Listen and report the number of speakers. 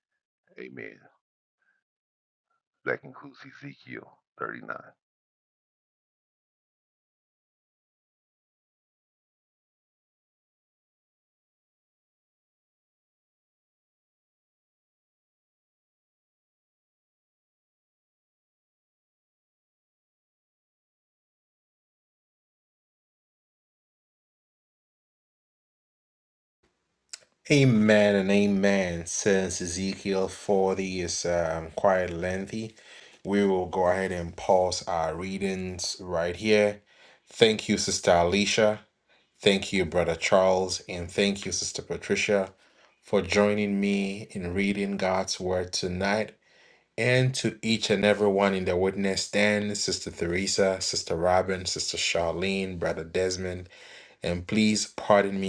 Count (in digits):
2